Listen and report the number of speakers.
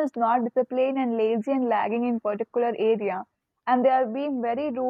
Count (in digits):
1